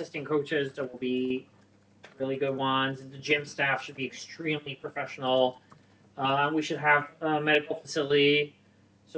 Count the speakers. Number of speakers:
1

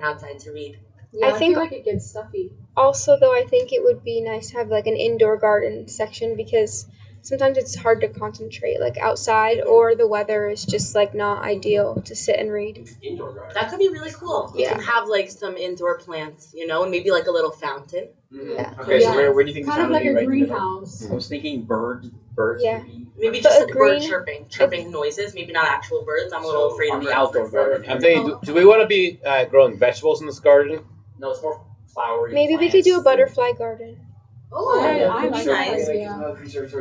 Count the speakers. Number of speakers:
6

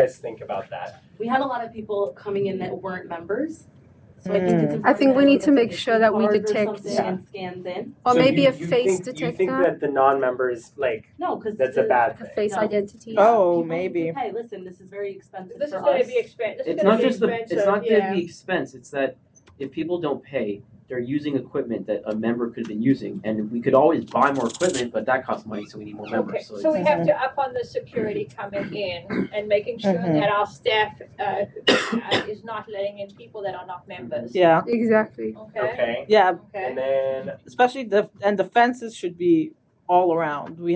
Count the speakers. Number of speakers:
6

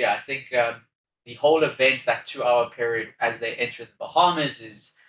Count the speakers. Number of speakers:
1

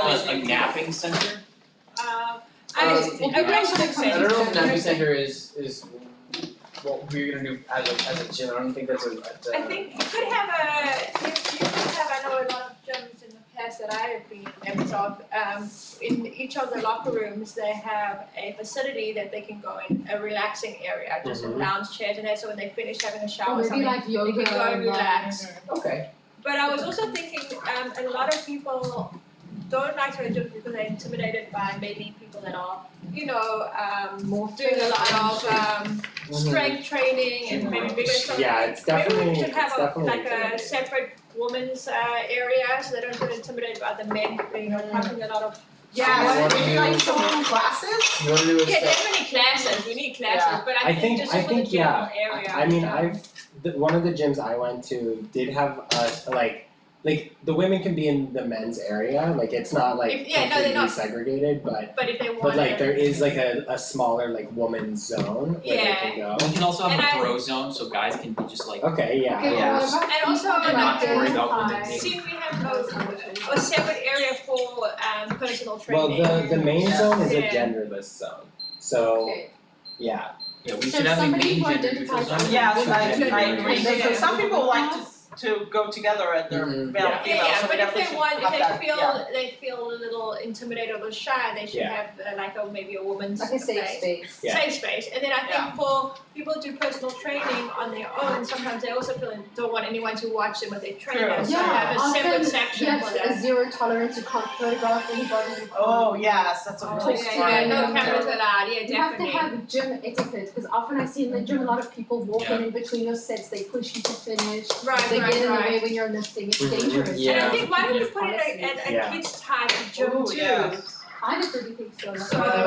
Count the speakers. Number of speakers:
6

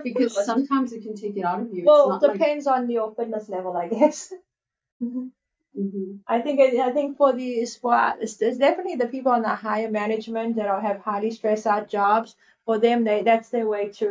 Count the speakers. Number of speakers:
2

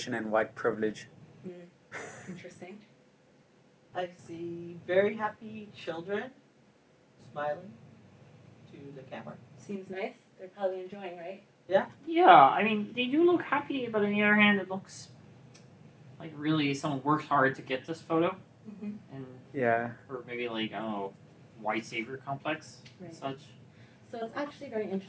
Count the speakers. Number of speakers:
4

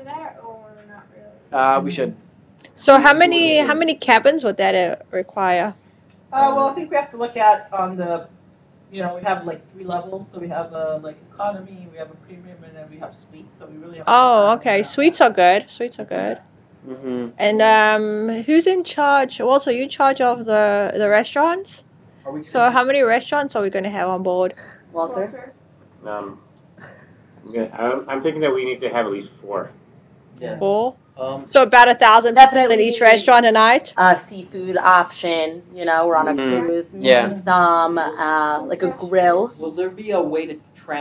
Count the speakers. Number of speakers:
7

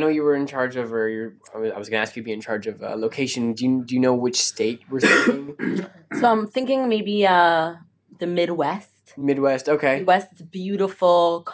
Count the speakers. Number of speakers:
2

